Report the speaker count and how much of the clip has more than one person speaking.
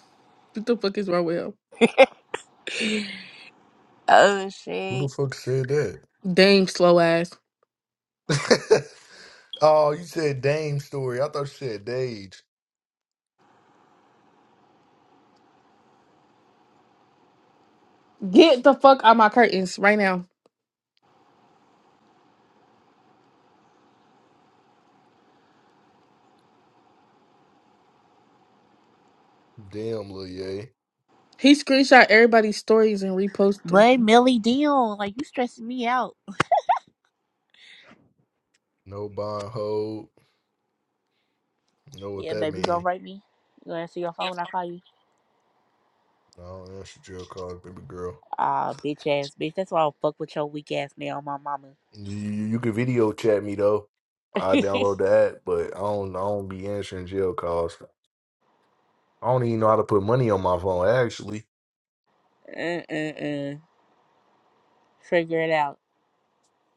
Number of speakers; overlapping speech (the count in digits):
3, about 1%